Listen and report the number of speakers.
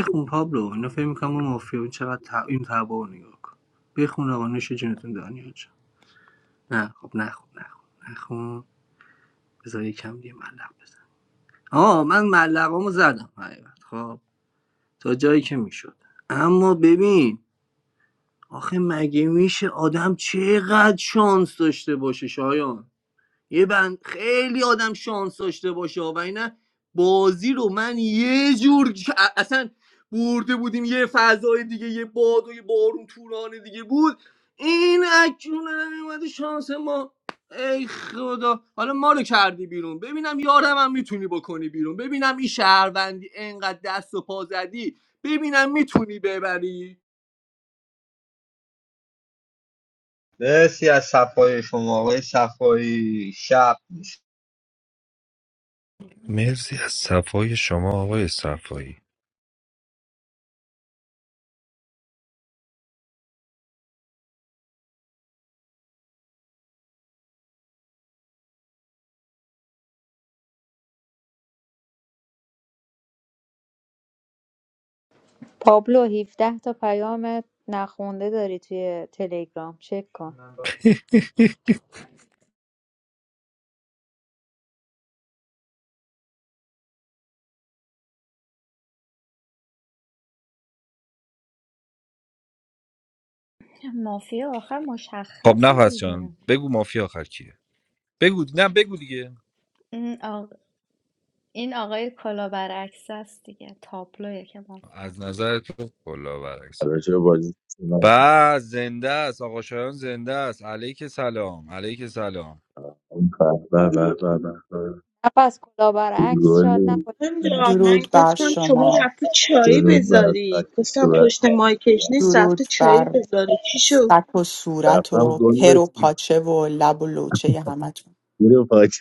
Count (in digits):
8